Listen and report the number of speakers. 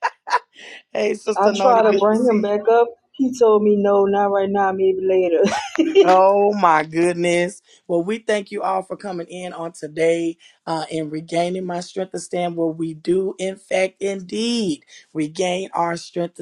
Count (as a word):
two